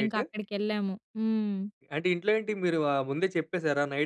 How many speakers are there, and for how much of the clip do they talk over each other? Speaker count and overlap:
two, about 6%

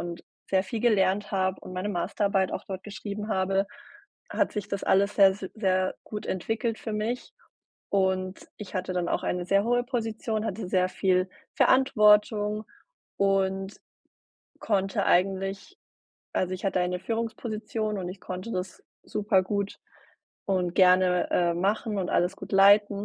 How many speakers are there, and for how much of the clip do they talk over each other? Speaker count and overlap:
one, no overlap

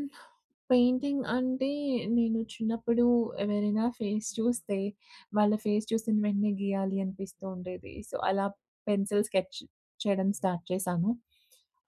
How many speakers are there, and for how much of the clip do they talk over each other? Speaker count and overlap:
one, no overlap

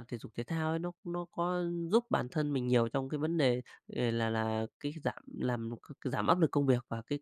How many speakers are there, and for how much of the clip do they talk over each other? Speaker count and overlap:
one, no overlap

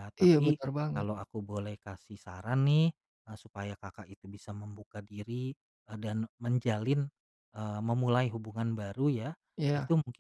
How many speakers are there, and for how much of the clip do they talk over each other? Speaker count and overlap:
two, about 6%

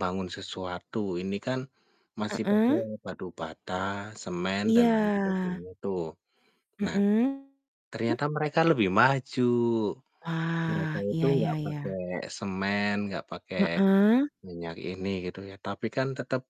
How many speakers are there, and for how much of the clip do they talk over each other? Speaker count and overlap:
two, about 18%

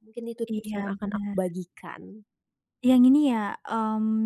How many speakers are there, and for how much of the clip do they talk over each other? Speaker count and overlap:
two, about 21%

